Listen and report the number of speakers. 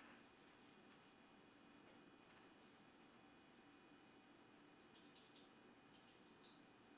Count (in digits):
0